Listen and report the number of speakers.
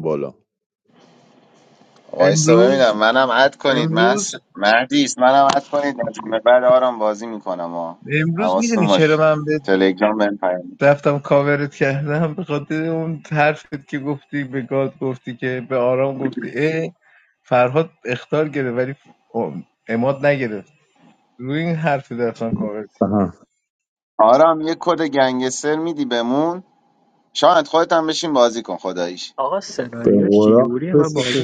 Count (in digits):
4